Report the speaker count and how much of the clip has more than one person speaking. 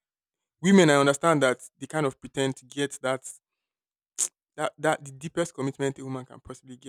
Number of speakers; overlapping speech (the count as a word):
one, no overlap